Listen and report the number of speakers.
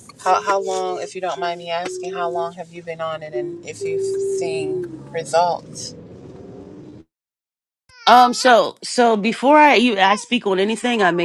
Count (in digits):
2